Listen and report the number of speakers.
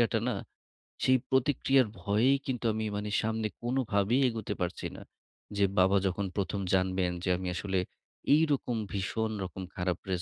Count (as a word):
one